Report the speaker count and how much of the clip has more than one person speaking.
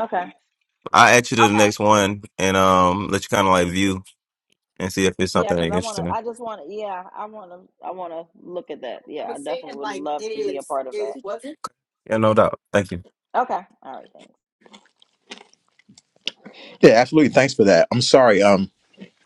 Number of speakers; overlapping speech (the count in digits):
3, about 4%